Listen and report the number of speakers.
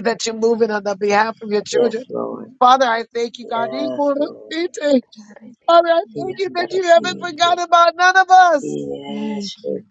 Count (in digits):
3